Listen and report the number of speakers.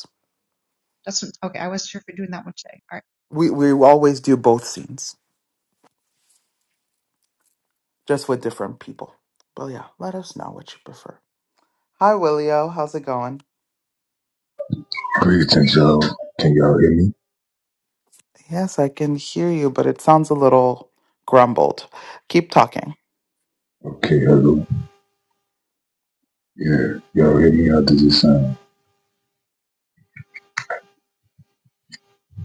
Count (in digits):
3